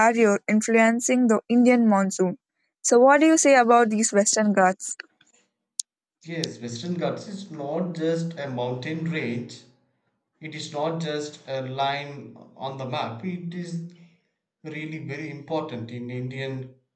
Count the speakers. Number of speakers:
two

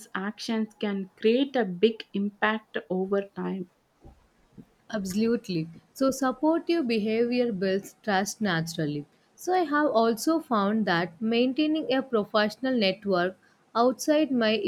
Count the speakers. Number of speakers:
two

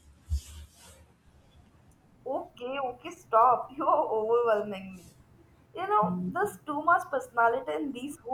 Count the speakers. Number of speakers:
one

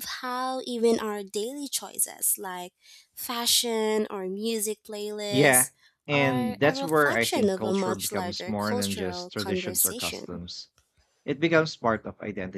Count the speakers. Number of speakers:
two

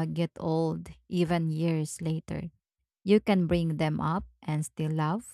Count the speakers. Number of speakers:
one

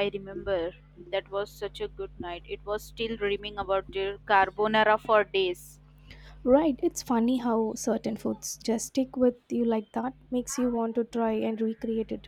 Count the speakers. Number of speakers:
two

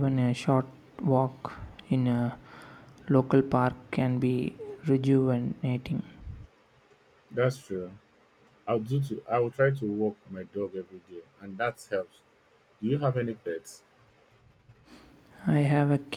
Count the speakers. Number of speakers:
two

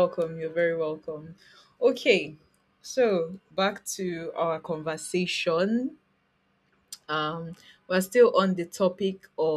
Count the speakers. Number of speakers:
one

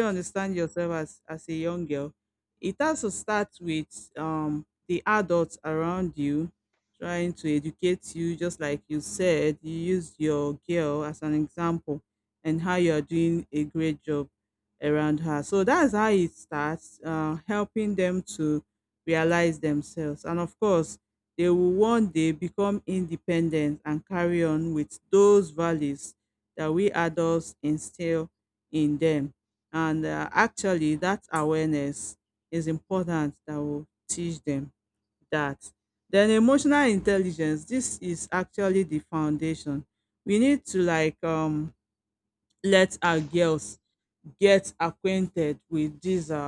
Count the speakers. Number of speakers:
one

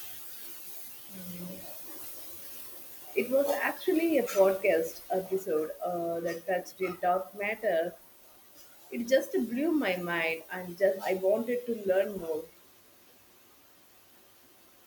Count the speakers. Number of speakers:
one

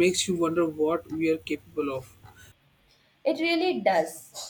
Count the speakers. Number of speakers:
two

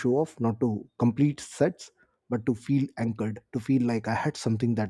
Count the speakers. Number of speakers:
one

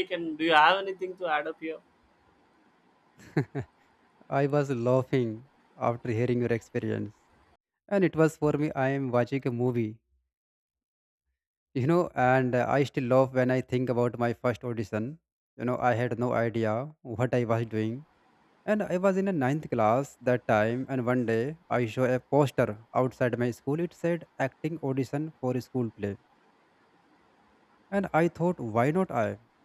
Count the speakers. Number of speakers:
two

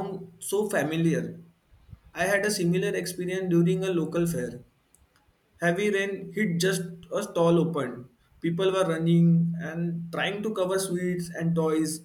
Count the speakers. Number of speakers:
one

